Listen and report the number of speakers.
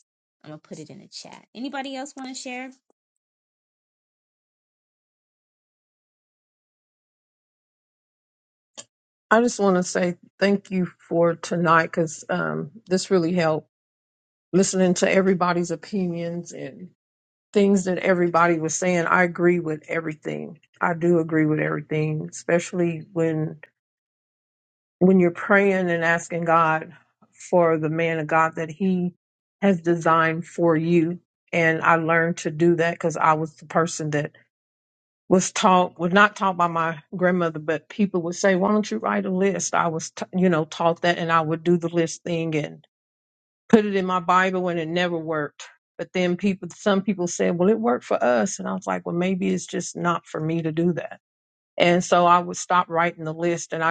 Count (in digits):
2